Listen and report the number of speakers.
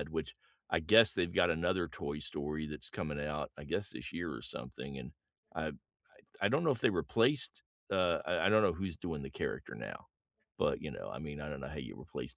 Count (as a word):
one